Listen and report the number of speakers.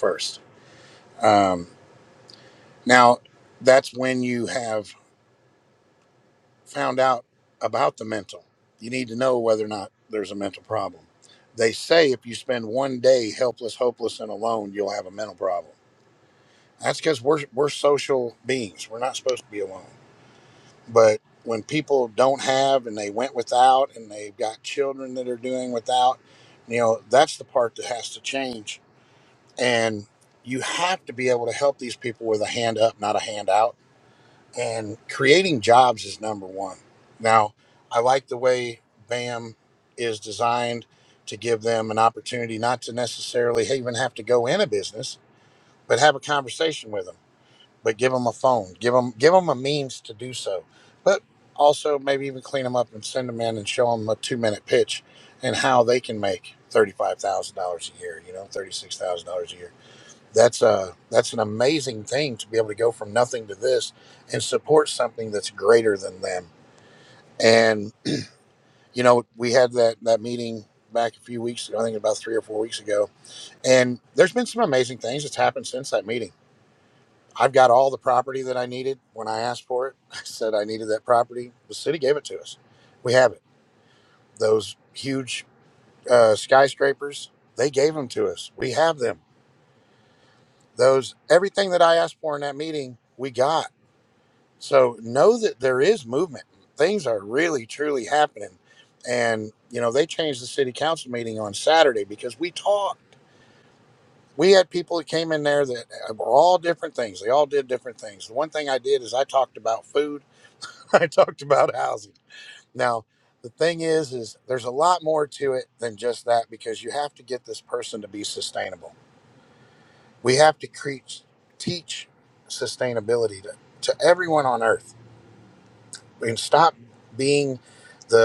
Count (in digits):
1